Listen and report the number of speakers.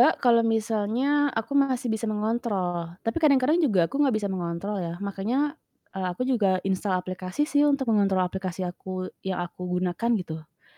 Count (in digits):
1